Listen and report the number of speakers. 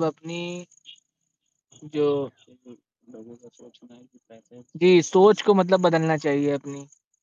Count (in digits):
1